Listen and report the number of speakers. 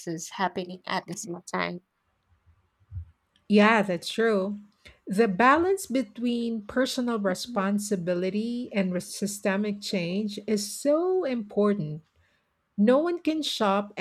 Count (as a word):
two